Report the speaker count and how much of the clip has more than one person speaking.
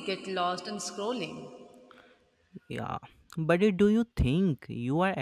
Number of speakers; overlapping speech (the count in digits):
2, no overlap